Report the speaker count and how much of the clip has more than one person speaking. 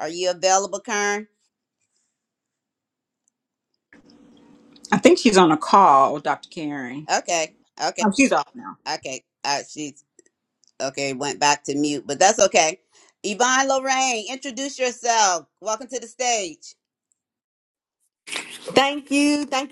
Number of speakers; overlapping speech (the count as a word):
three, under 1%